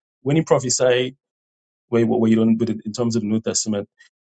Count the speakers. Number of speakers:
one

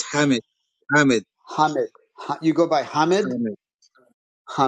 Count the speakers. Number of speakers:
two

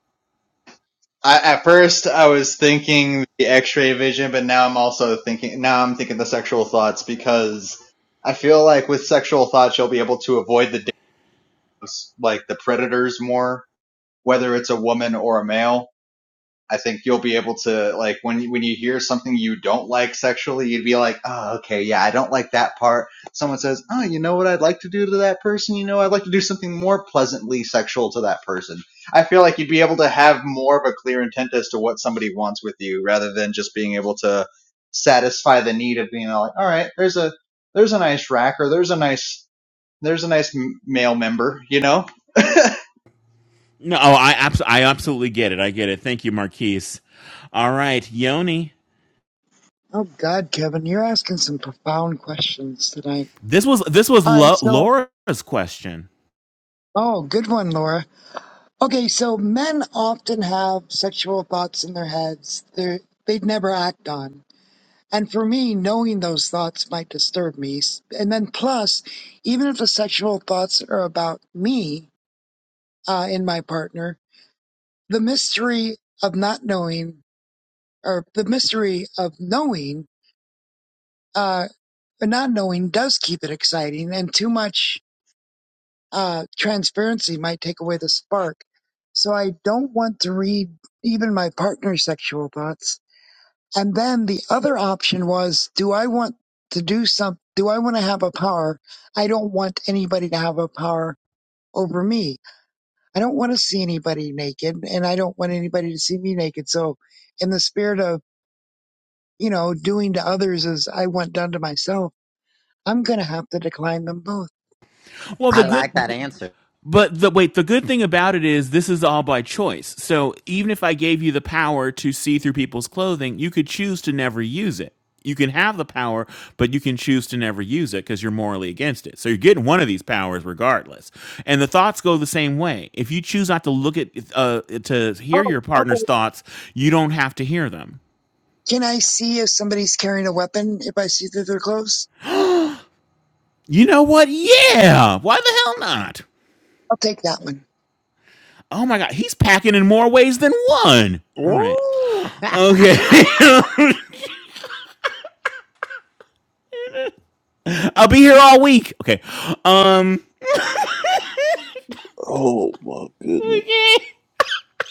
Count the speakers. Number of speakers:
five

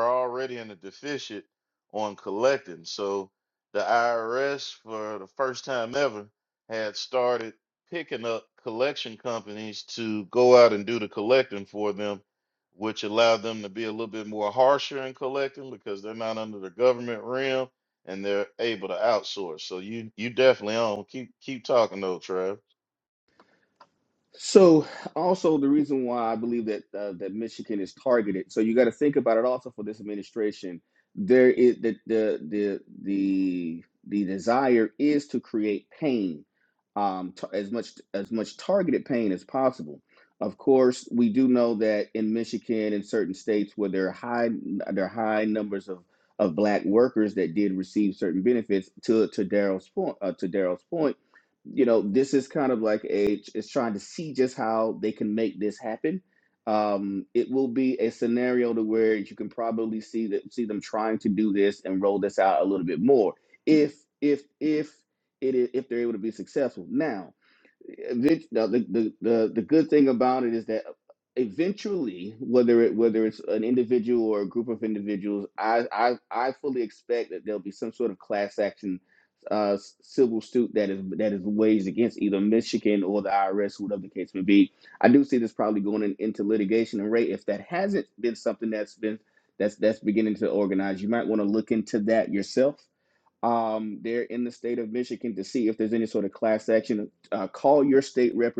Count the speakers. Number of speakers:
two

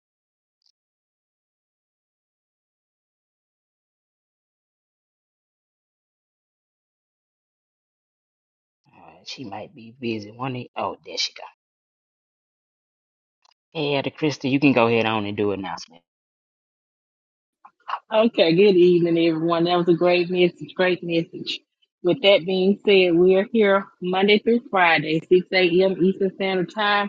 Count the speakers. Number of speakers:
two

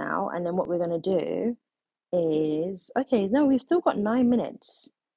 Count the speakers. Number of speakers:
one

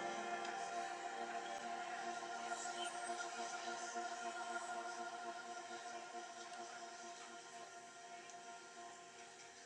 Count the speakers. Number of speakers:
zero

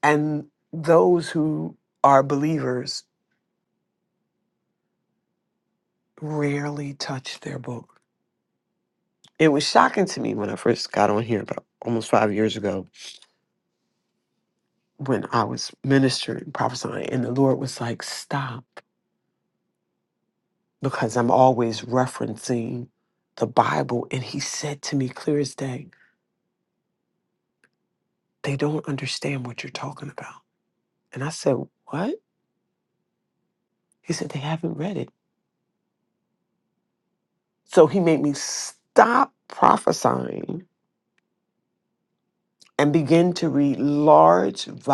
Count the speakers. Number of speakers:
one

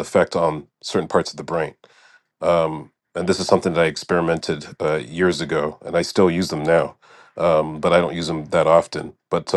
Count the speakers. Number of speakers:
one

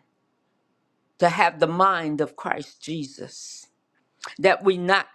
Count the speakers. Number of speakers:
one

